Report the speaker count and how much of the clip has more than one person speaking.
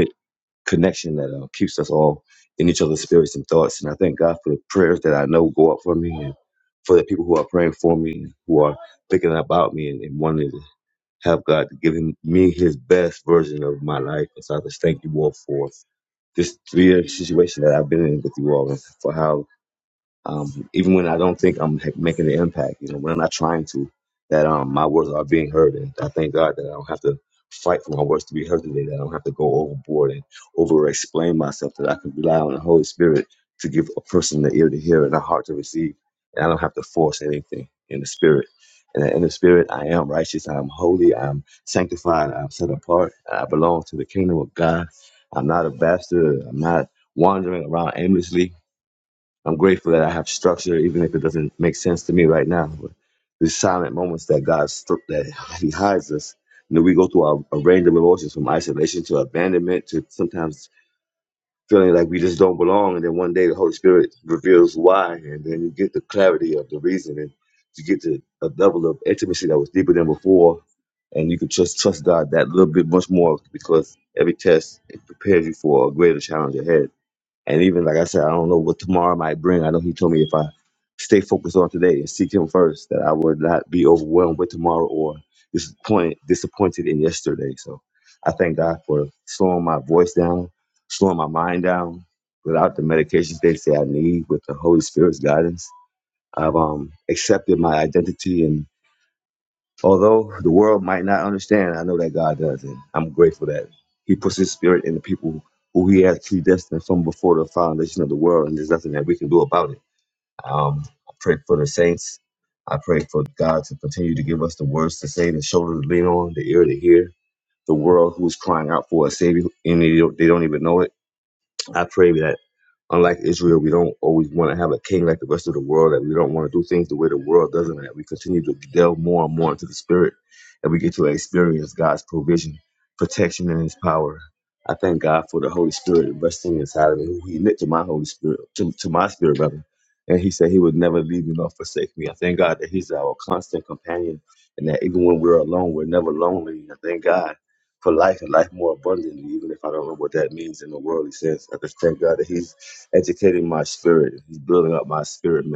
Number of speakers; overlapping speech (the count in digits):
1, no overlap